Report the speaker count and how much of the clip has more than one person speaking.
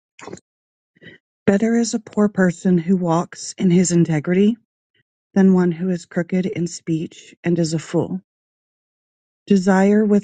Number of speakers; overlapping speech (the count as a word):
one, no overlap